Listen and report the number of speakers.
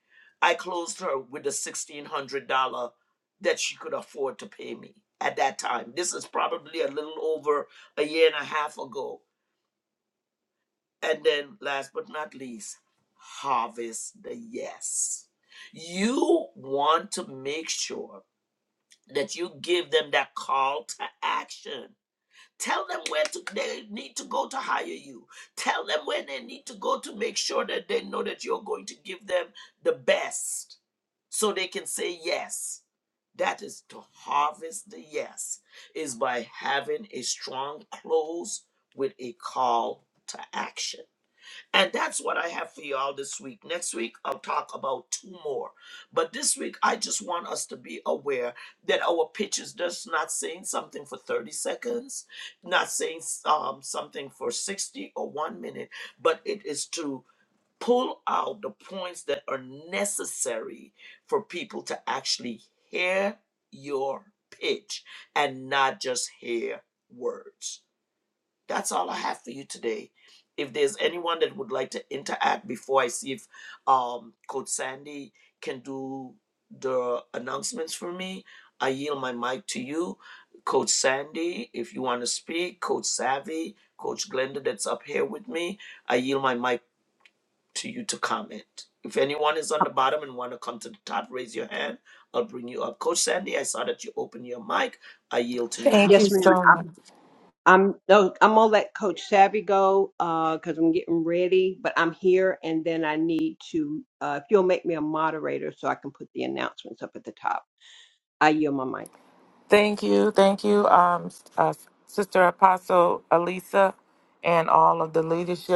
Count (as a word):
three